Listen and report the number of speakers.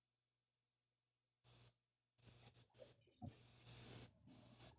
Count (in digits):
0